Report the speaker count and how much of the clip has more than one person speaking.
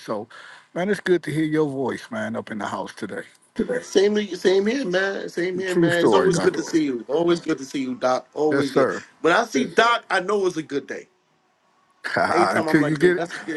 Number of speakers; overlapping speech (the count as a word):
two, about 19%